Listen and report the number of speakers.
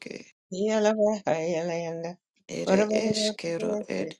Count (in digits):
2